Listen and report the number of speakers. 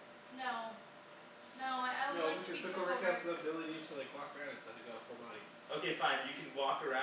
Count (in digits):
3